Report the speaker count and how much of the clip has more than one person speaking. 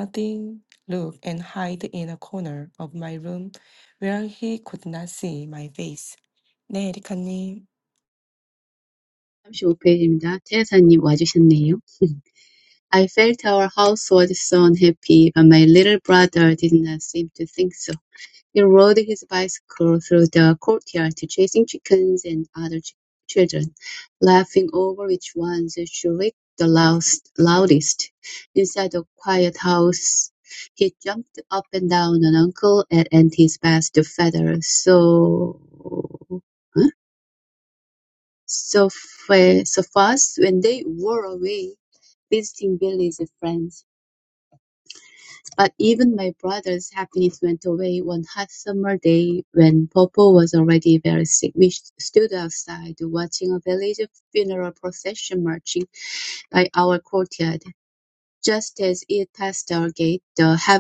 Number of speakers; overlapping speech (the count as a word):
two, no overlap